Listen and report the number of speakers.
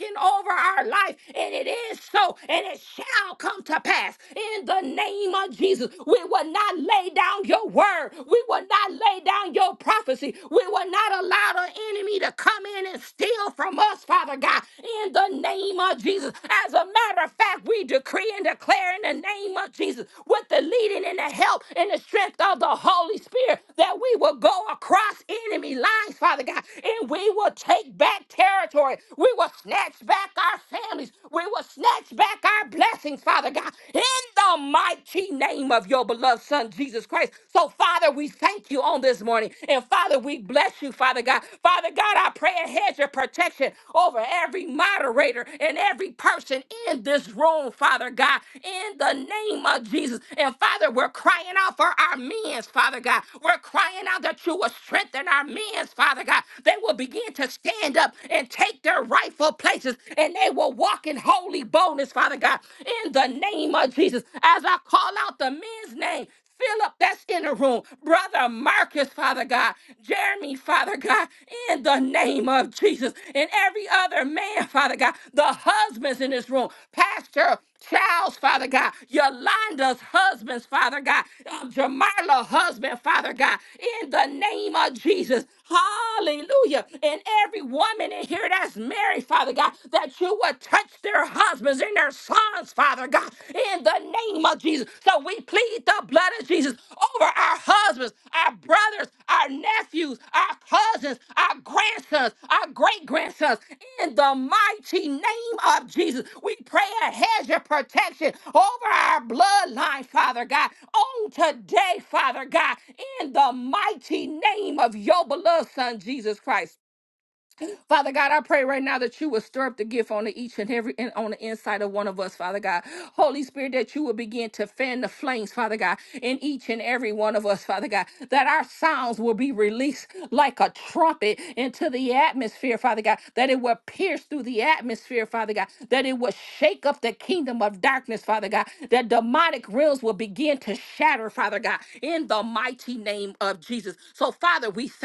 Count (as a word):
one